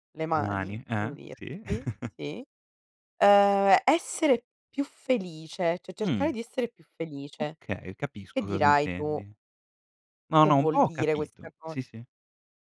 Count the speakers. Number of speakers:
2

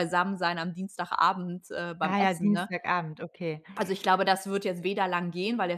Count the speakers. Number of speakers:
2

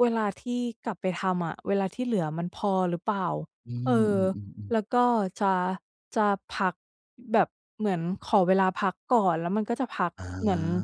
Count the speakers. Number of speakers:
2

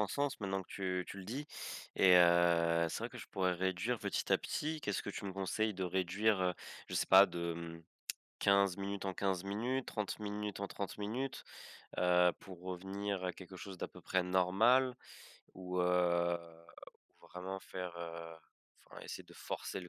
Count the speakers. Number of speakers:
1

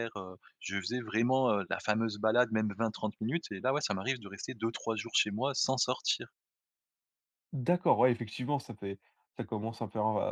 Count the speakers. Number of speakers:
2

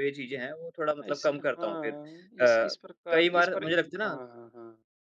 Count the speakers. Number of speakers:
2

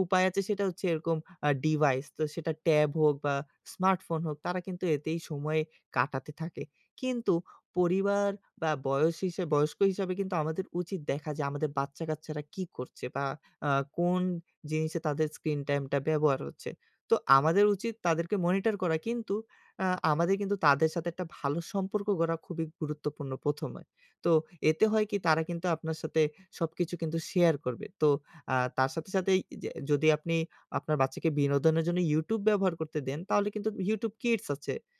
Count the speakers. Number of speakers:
1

